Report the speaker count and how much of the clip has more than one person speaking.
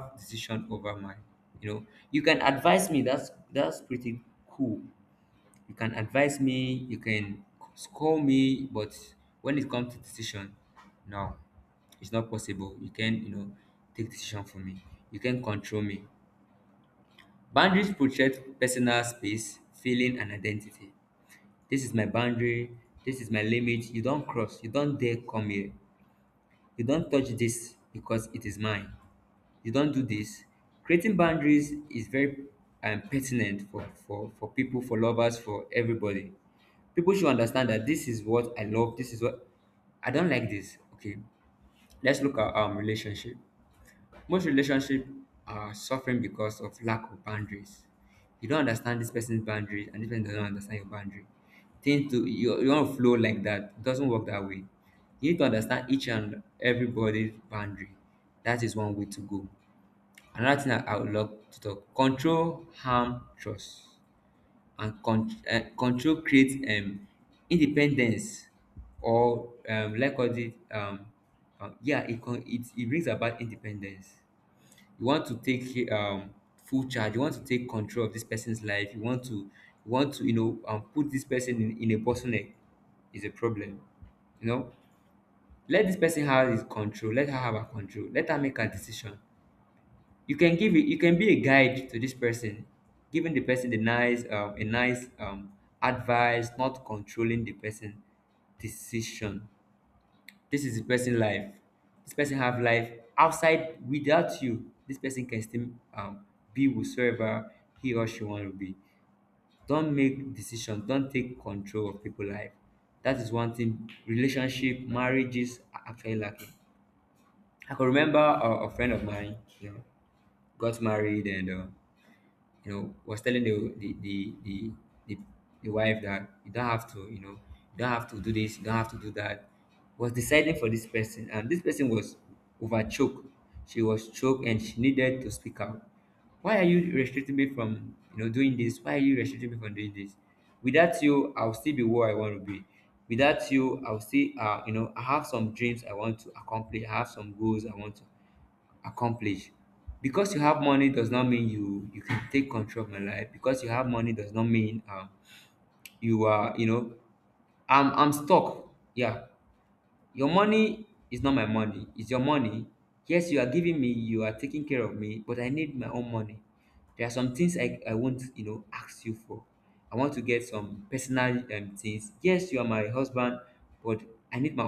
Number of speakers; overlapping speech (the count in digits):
1, no overlap